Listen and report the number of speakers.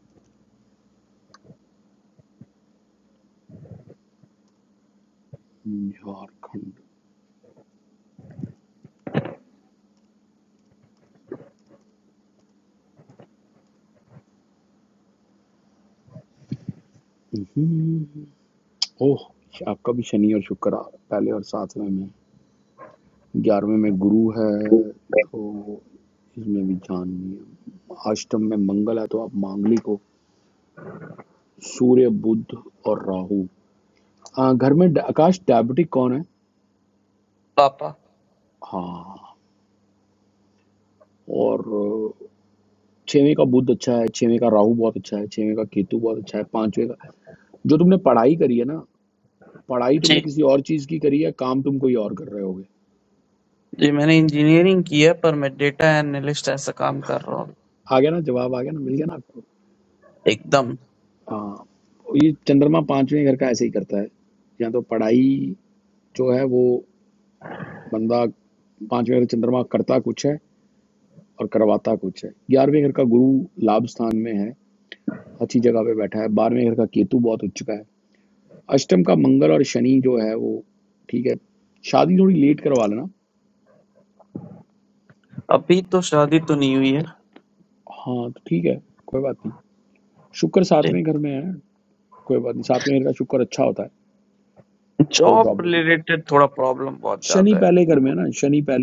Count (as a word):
two